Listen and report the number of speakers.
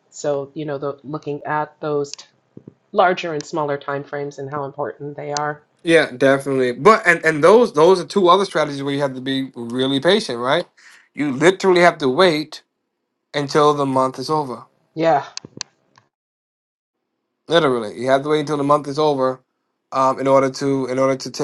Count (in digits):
2